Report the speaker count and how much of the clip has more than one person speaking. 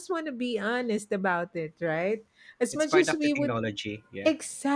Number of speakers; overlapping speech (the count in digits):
2, about 18%